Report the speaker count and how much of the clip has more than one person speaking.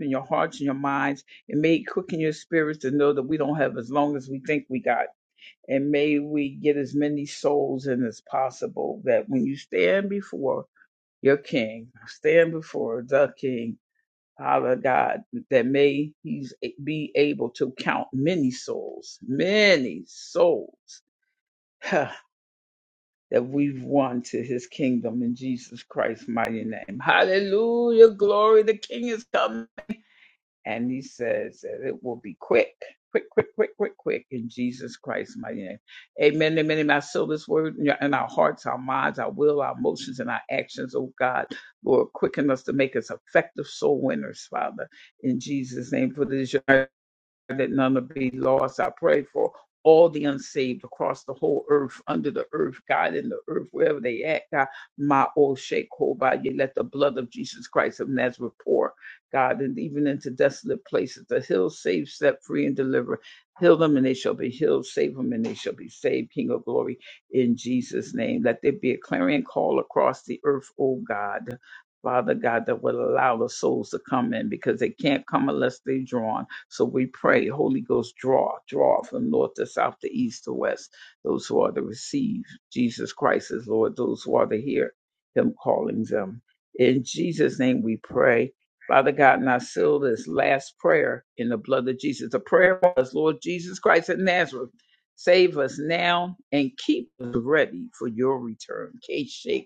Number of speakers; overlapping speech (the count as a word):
one, no overlap